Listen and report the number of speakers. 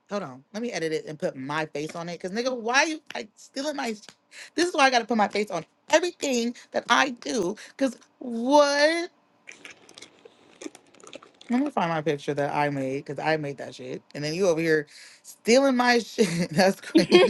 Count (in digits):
1